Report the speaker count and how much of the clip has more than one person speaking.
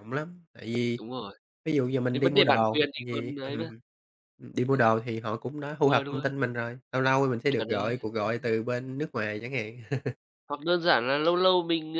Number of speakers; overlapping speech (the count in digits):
2, about 22%